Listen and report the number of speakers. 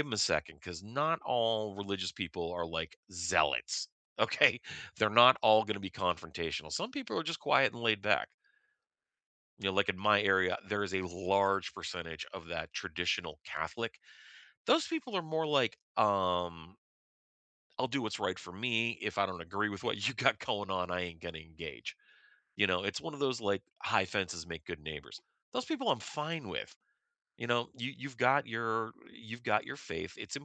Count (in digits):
1